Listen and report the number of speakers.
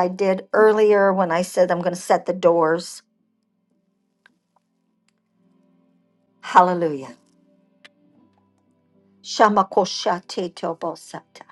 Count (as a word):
one